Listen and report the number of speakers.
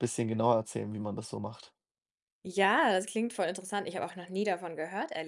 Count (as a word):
two